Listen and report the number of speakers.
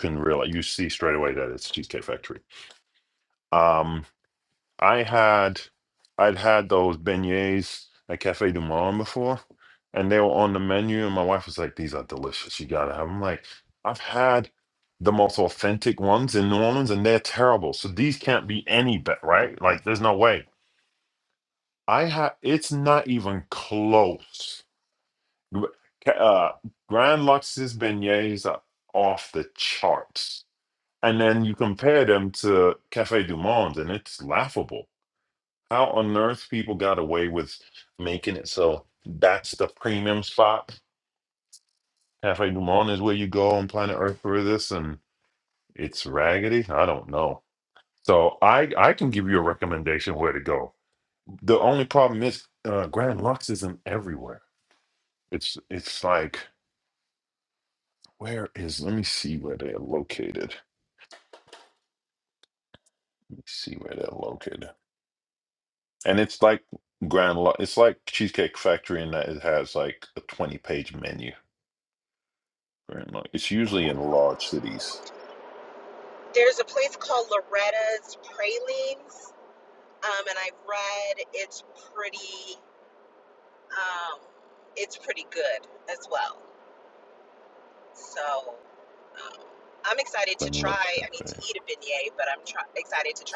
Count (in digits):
2